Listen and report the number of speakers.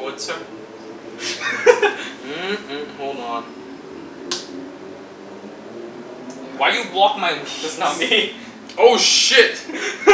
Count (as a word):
three